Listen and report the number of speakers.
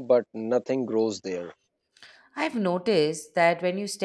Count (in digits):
2